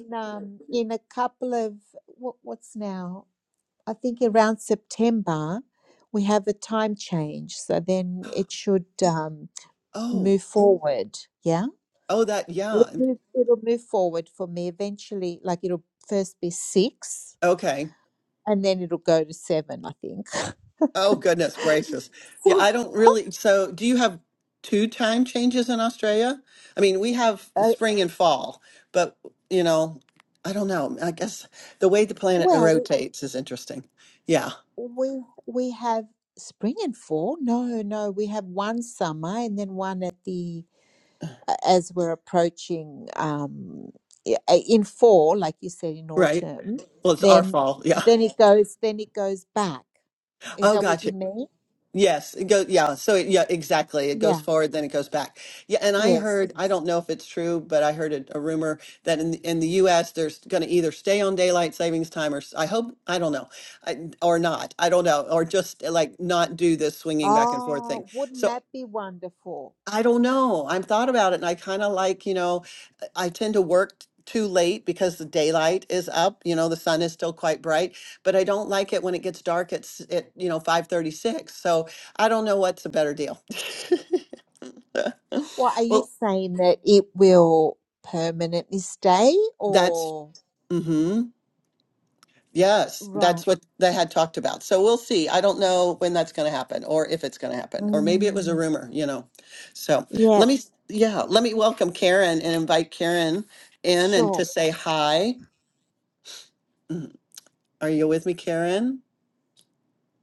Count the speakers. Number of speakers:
2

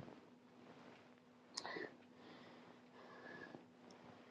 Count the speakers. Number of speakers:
0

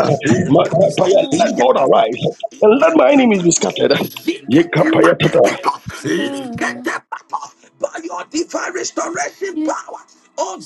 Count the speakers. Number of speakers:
3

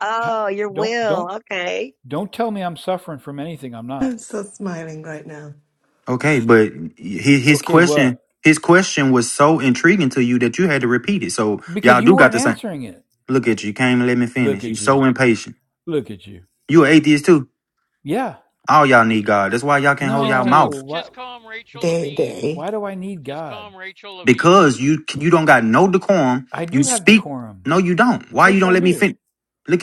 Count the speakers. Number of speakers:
5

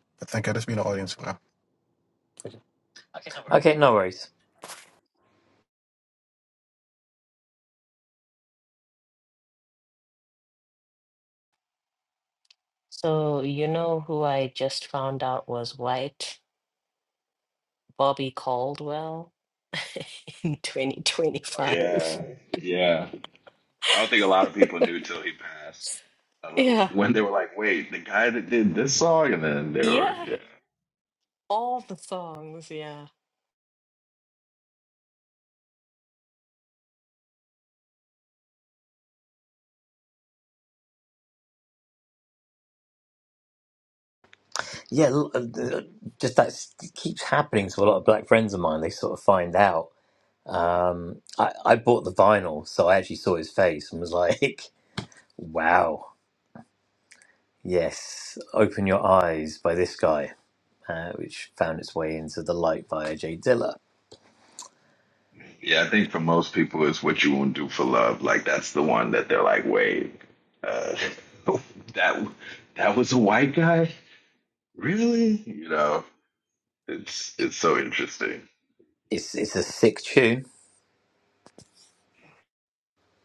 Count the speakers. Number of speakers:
4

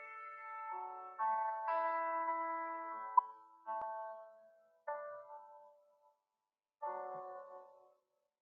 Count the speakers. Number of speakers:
0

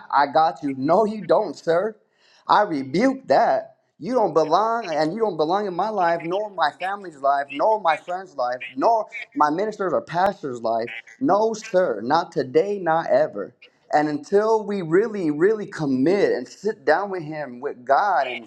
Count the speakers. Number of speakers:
1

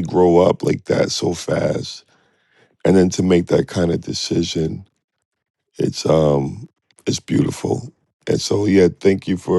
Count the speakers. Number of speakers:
1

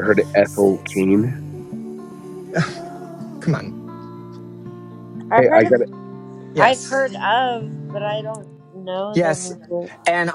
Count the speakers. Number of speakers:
3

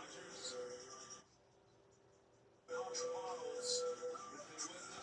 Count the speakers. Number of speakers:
0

